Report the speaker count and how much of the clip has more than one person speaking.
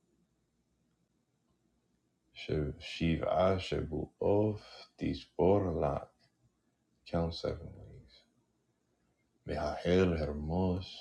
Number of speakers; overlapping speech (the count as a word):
one, no overlap